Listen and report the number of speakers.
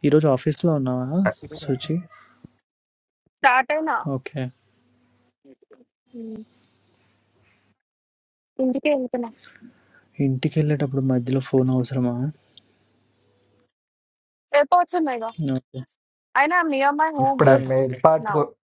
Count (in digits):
3